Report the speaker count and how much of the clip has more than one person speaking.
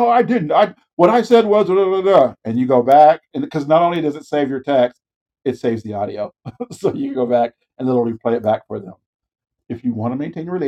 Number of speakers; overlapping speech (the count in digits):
1, no overlap